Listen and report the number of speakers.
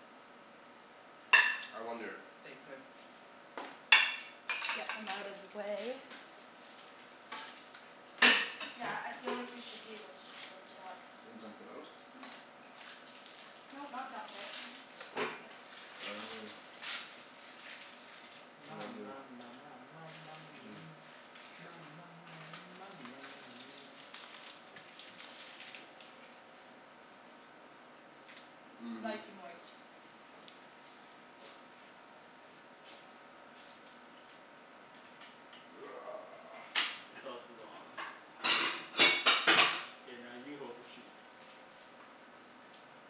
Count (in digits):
3